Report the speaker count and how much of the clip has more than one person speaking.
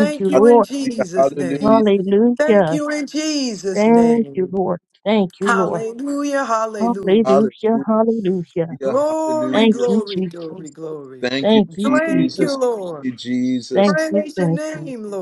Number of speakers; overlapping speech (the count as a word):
three, about 49%